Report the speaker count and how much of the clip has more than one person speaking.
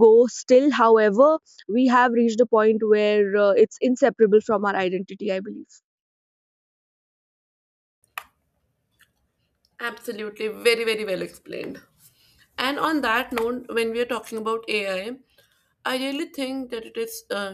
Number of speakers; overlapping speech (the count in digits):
2, no overlap